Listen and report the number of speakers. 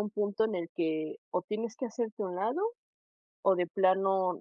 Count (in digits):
1